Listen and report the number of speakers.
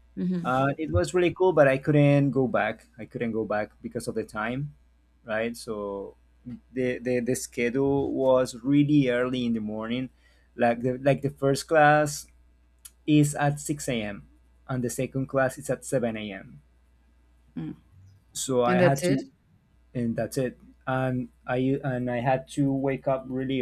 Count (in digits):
2